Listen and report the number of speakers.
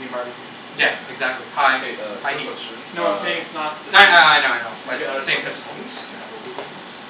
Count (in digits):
3